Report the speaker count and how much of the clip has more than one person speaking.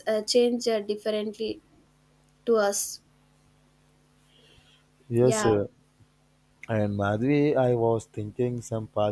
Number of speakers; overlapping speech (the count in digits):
2, about 4%